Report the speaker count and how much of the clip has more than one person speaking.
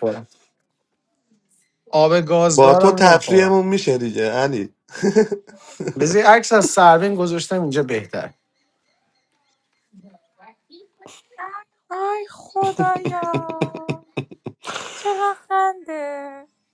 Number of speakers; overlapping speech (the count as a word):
three, about 6%